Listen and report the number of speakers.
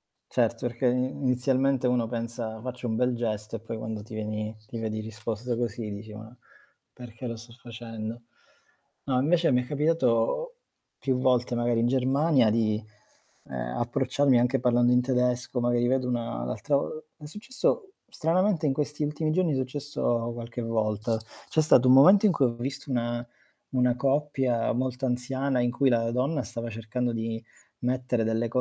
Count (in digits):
1